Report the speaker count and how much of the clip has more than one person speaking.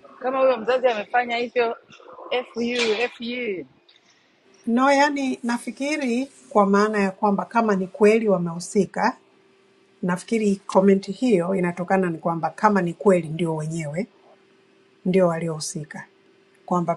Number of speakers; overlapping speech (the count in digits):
2, no overlap